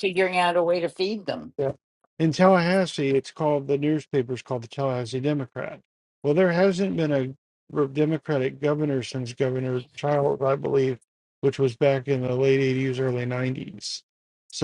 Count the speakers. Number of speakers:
2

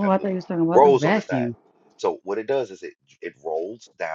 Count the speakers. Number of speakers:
2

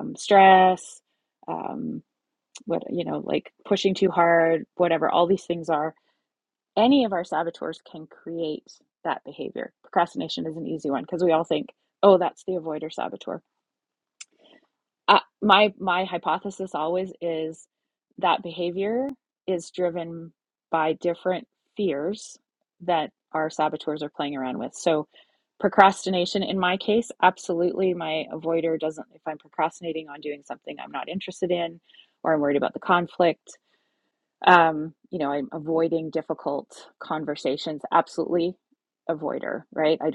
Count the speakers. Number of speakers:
1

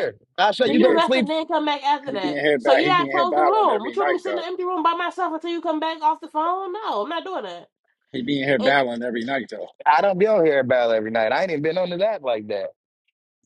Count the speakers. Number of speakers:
3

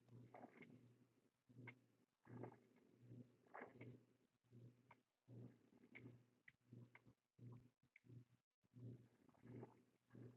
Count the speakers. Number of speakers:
0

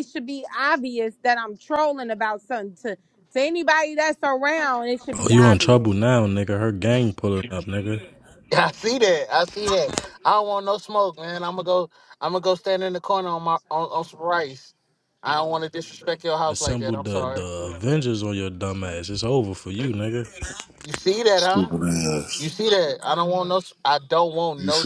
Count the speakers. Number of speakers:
4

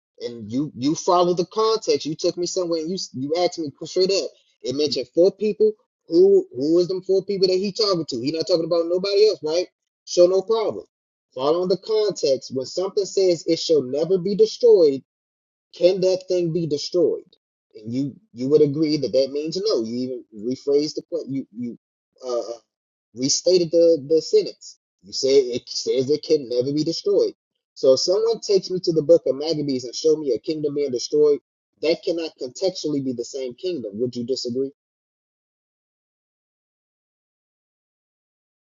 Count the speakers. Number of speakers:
1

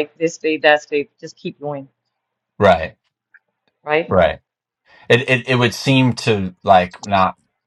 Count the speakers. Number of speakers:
2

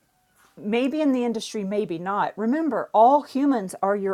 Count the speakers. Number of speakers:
1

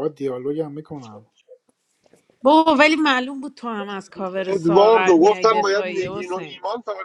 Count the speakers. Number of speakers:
3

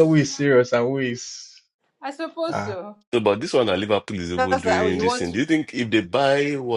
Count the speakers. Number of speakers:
3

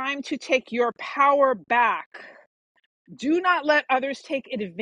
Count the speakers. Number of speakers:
1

